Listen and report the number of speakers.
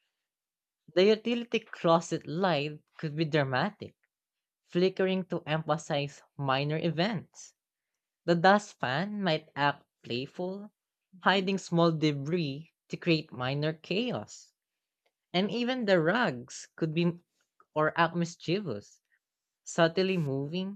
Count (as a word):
one